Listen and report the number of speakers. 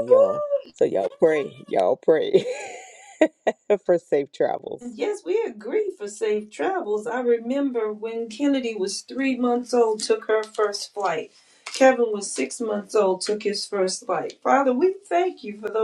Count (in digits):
2